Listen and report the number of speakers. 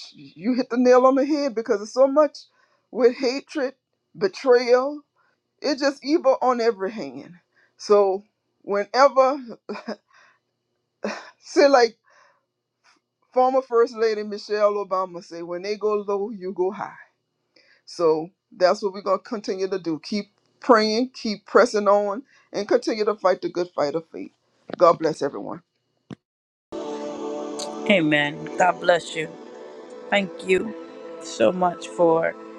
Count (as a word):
two